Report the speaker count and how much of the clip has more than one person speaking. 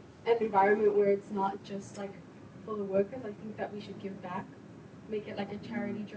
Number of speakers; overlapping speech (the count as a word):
one, no overlap